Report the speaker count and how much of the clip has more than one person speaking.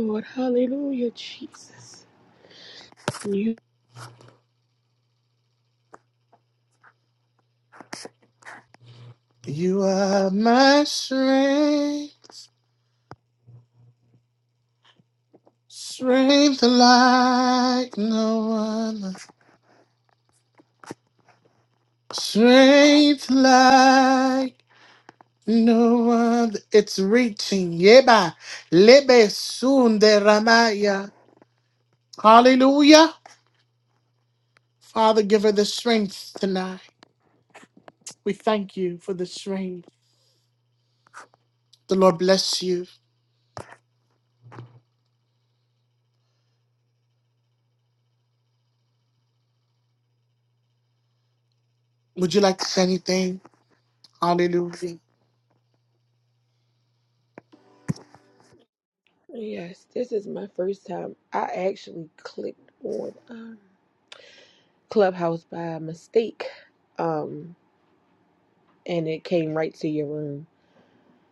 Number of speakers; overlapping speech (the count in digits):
2, no overlap